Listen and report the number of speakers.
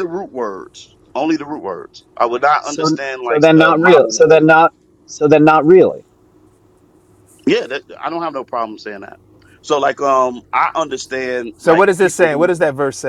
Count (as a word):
three